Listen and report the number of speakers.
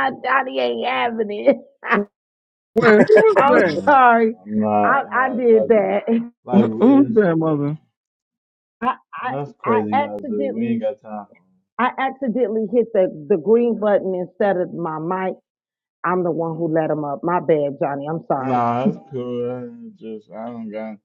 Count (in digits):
3